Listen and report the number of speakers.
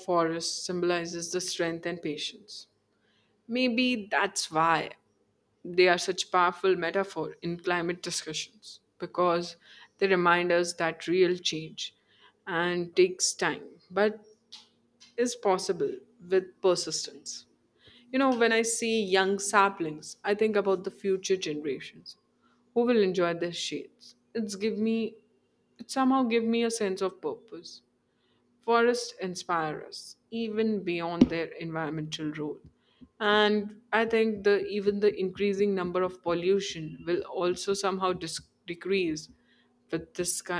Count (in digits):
1